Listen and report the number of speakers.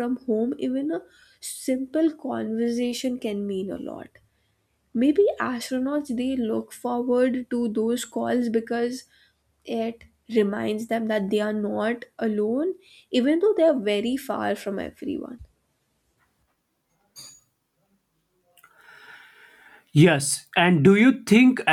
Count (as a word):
two